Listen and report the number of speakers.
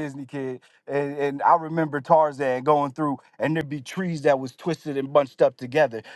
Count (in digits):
1